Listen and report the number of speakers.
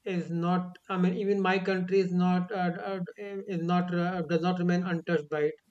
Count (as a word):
one